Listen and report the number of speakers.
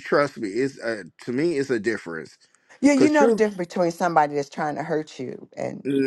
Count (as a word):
two